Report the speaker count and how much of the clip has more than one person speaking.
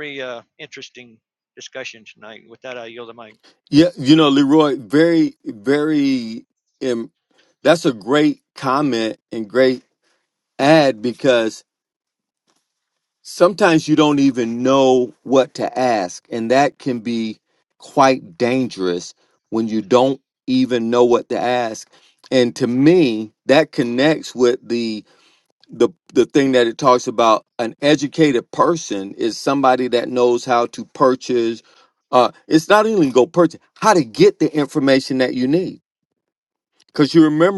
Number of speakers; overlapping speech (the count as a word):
two, no overlap